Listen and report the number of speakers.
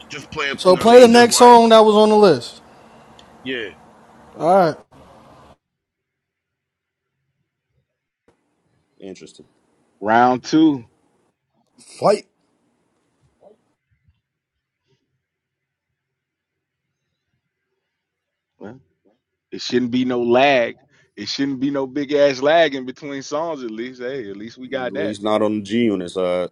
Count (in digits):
4